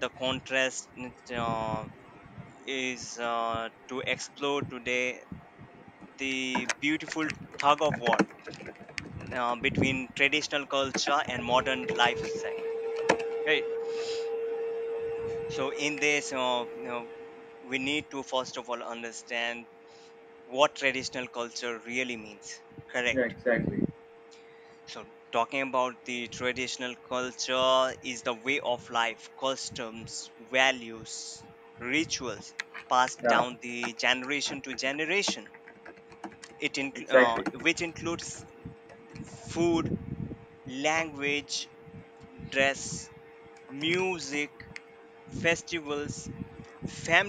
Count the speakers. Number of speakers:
two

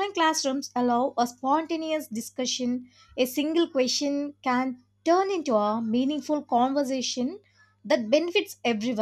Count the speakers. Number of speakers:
one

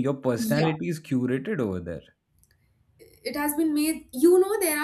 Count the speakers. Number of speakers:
two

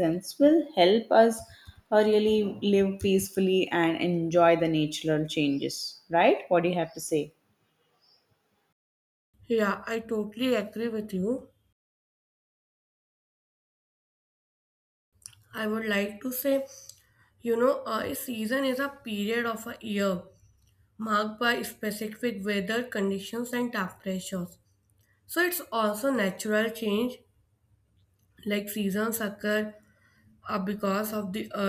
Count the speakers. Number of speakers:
two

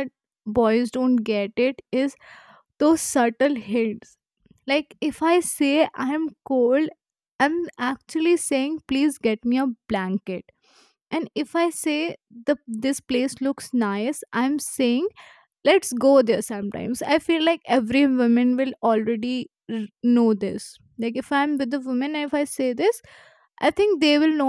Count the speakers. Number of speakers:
one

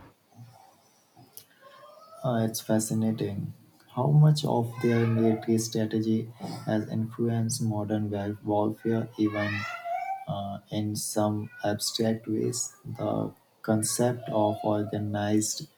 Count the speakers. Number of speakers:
one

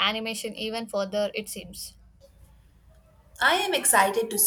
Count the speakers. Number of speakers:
two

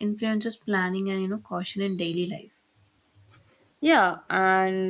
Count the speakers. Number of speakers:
two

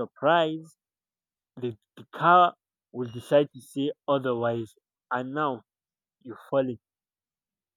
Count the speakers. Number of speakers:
one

